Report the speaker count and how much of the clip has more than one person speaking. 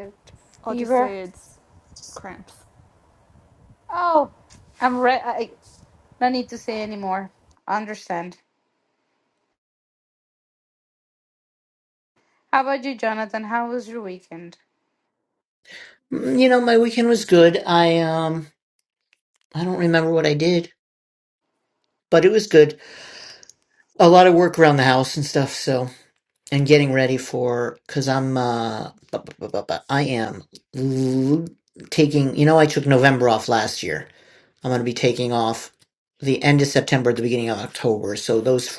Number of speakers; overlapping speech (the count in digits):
3, about 1%